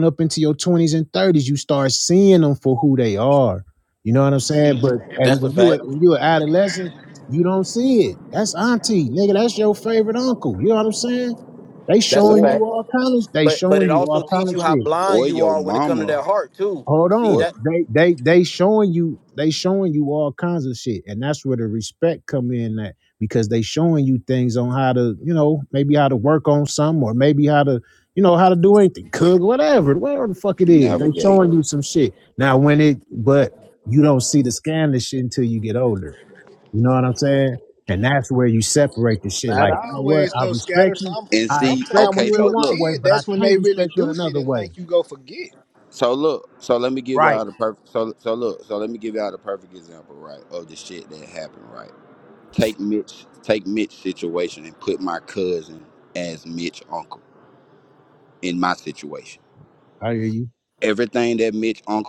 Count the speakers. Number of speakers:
four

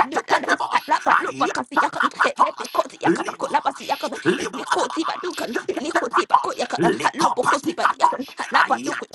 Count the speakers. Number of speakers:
two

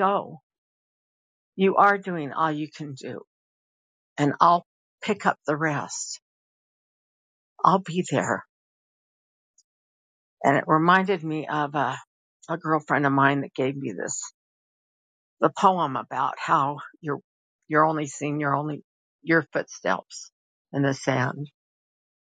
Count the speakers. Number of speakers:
one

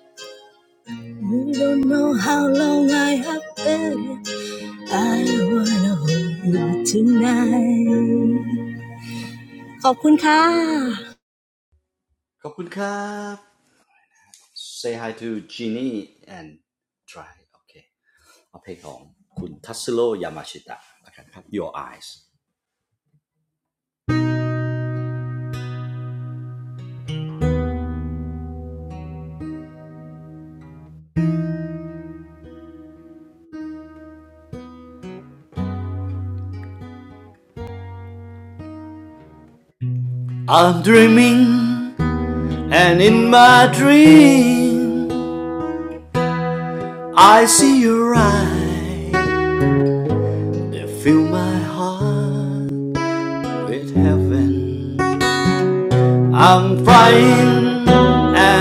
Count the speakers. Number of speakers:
two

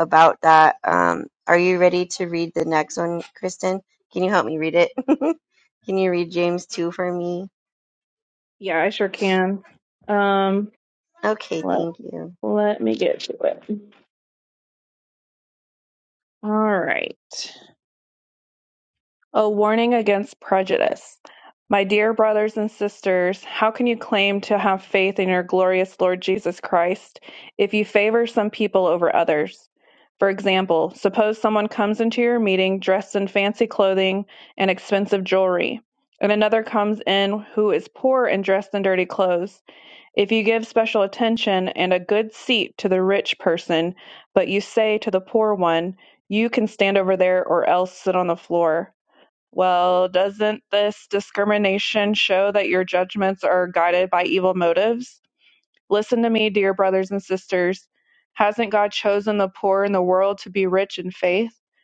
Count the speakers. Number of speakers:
two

